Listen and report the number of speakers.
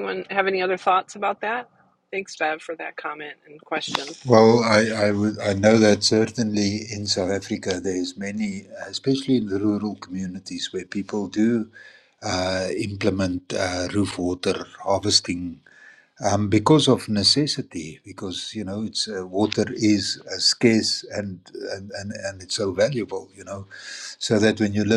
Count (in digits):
2